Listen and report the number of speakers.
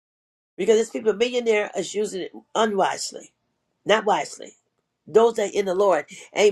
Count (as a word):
one